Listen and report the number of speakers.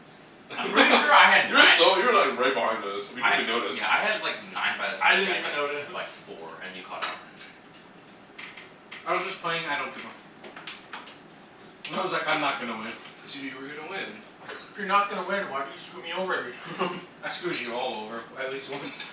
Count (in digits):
4